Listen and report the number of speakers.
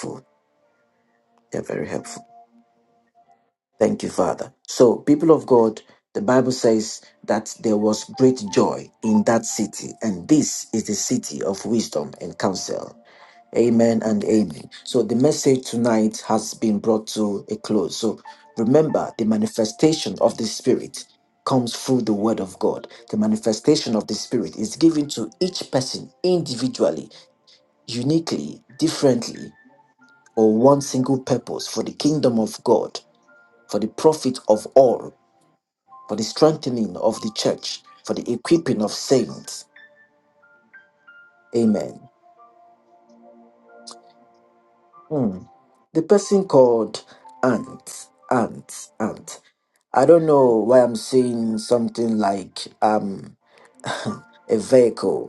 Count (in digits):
1